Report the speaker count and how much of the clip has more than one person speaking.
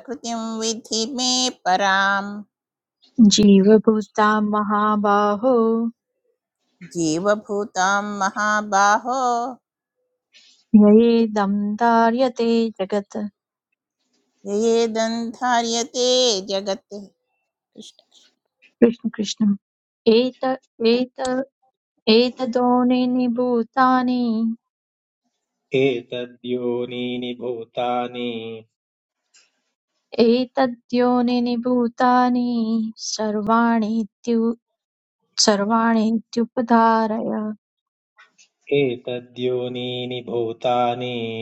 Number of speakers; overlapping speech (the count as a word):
three, no overlap